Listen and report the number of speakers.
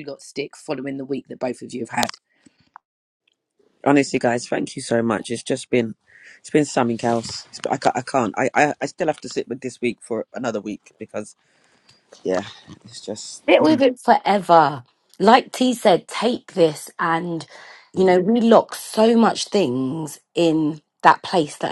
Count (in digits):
3